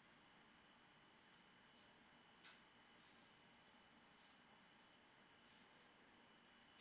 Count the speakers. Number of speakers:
0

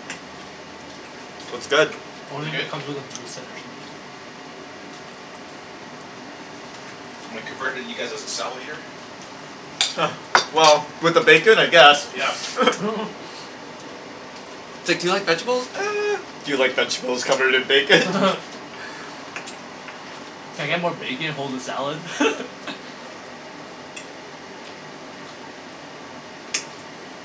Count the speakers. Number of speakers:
3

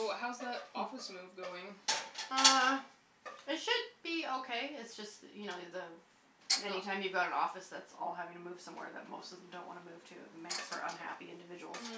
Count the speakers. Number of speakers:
2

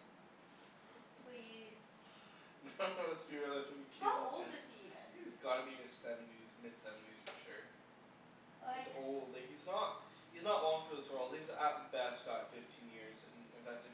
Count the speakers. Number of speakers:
2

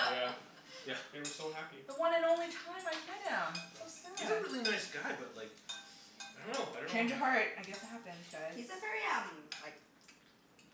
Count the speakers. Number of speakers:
4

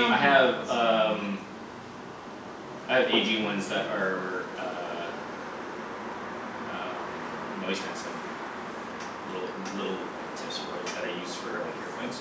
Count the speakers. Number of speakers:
1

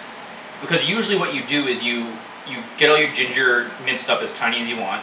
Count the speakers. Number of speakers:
1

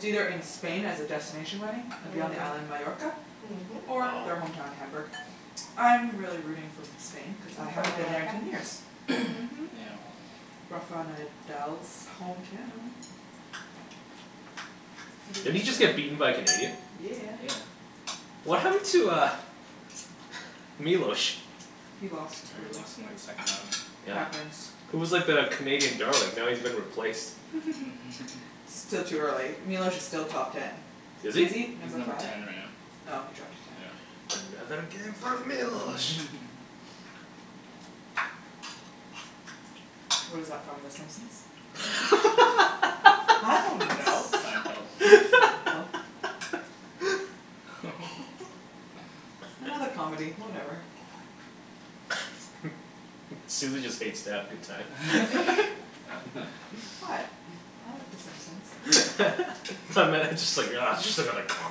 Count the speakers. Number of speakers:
3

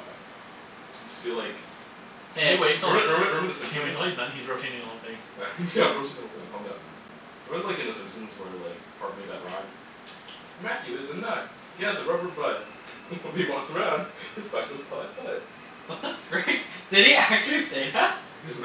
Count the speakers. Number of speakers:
3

